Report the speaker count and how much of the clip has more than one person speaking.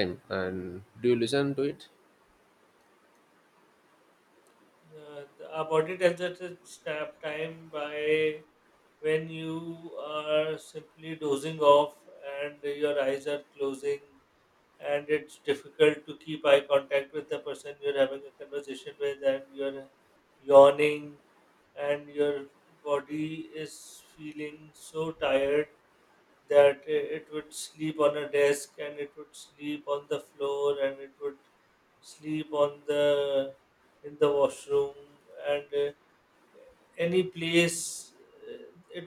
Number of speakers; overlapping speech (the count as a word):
two, no overlap